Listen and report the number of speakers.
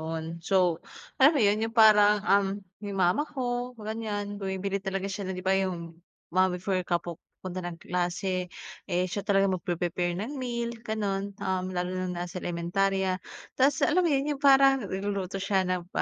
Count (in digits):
1